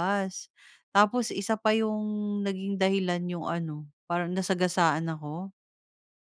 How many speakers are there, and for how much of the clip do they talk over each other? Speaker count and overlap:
one, no overlap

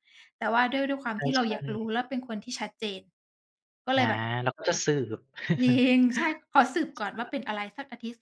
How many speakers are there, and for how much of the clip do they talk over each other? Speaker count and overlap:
two, about 11%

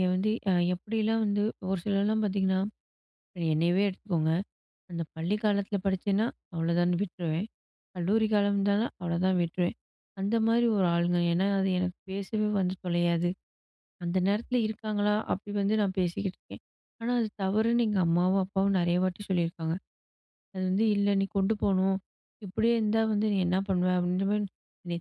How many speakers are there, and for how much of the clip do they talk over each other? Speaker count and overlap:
one, no overlap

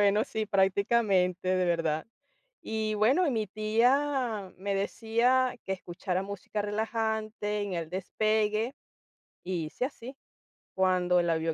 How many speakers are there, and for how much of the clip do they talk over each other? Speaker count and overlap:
one, no overlap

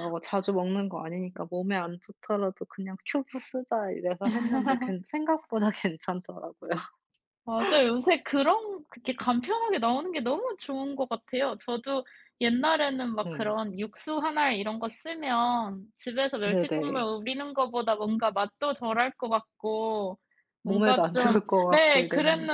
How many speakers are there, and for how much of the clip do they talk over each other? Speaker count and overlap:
two, about 13%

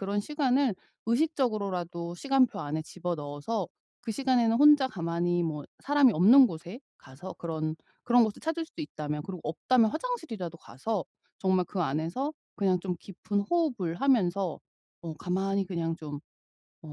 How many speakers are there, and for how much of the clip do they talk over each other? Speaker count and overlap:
one, no overlap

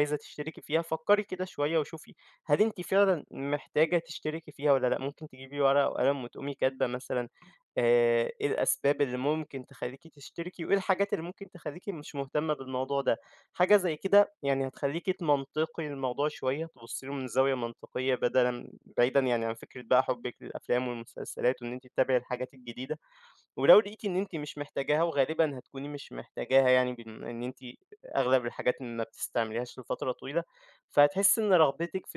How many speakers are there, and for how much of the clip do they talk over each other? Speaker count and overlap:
one, no overlap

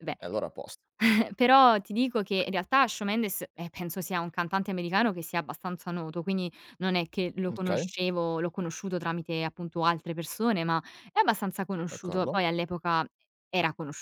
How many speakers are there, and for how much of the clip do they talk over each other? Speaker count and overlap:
two, about 6%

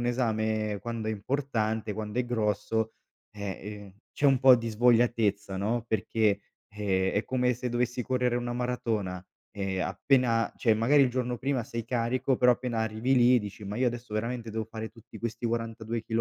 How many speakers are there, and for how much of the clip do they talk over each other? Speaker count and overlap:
one, no overlap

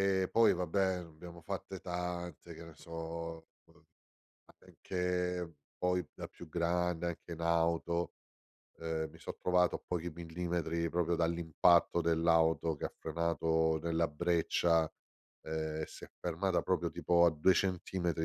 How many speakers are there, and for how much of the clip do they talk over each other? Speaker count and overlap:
one, no overlap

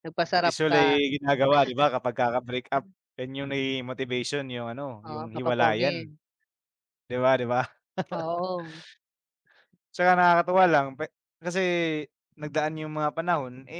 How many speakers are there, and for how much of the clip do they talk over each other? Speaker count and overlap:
two, about 11%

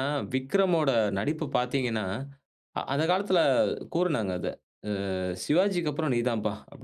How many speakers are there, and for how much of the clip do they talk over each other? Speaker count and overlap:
one, no overlap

